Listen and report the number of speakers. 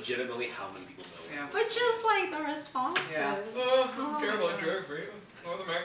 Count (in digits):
3